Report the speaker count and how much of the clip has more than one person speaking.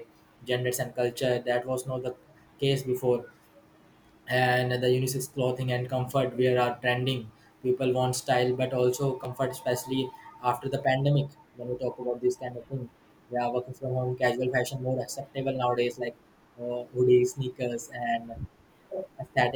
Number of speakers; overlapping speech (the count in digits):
1, no overlap